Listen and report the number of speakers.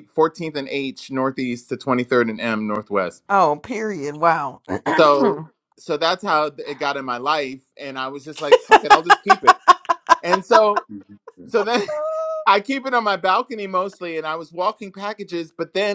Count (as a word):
two